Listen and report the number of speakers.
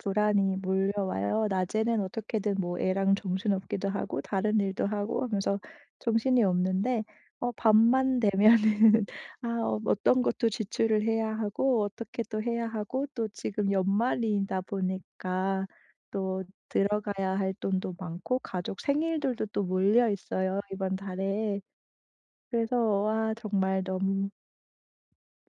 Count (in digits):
1